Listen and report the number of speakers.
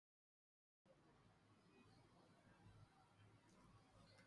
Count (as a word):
zero